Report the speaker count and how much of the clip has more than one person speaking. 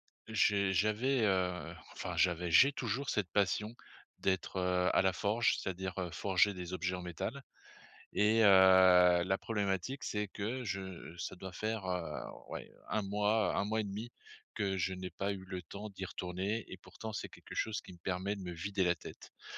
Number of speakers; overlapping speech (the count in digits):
1, no overlap